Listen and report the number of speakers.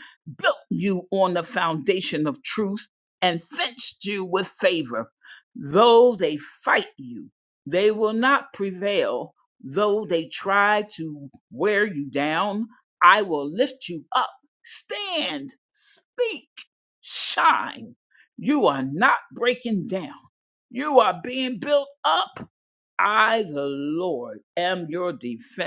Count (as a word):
one